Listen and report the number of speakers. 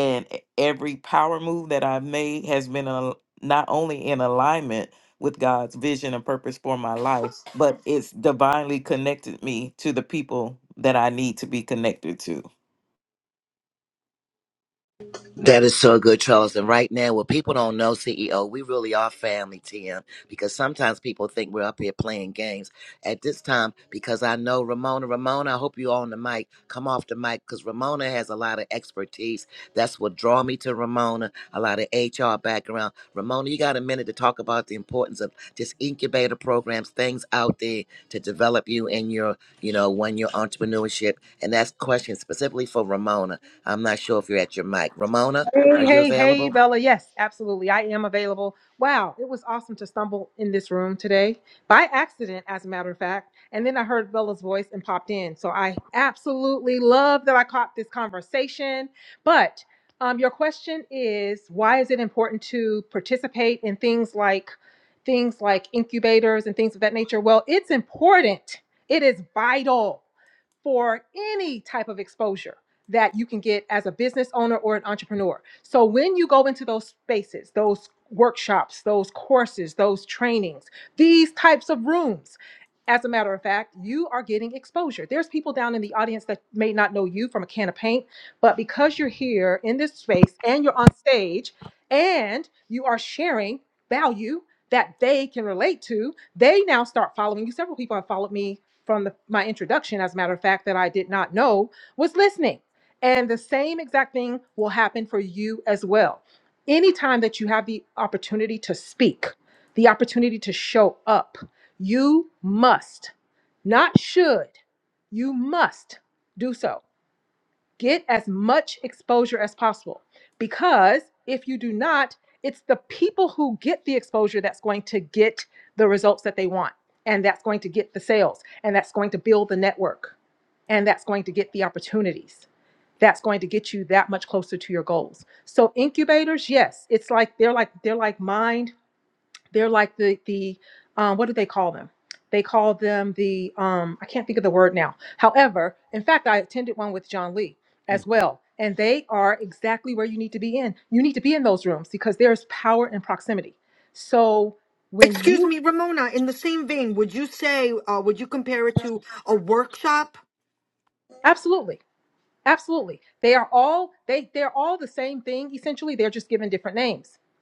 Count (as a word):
four